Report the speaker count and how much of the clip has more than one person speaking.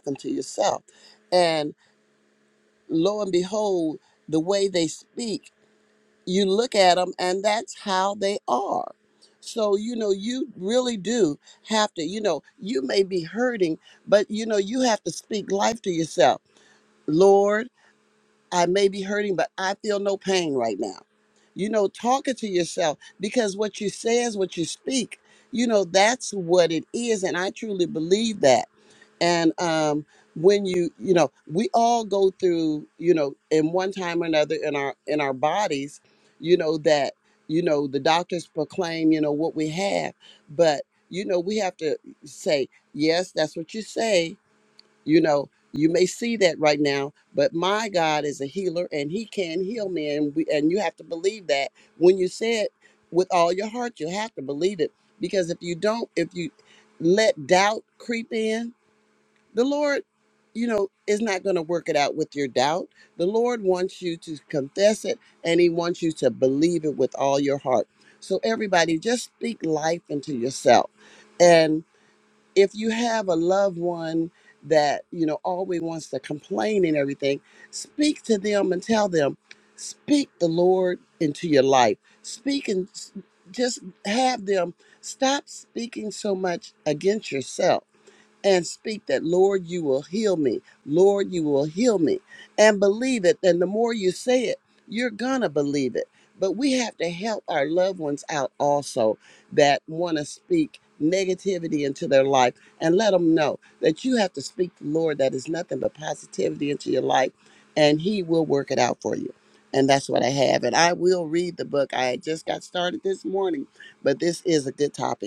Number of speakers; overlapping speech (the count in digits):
1, no overlap